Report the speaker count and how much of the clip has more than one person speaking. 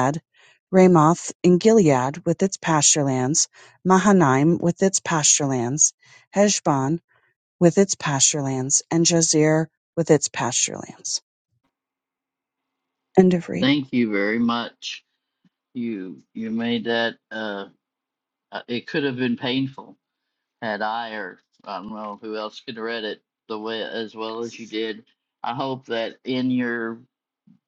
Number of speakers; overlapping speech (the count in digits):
2, under 1%